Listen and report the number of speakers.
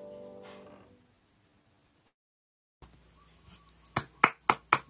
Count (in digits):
0